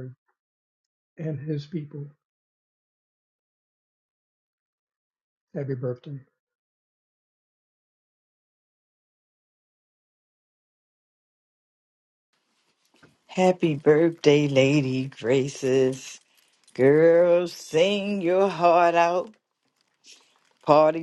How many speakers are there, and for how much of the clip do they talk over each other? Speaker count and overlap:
2, no overlap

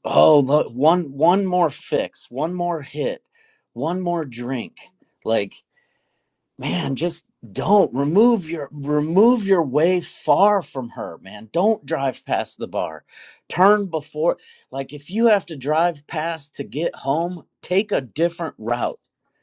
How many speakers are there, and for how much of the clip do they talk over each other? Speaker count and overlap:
1, no overlap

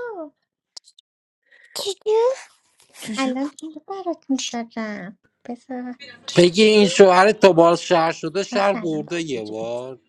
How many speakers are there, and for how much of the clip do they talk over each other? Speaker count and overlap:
3, about 14%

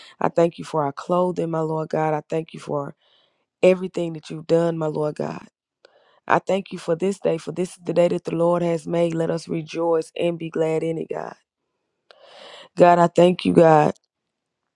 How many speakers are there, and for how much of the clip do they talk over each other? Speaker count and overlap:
1, no overlap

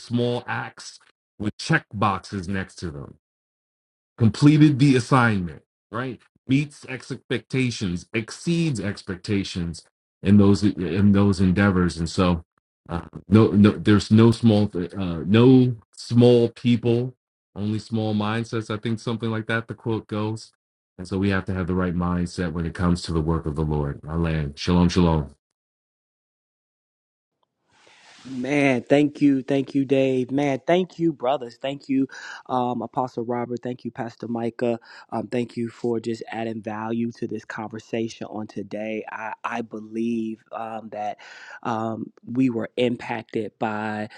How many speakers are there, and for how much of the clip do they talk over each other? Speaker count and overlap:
2, no overlap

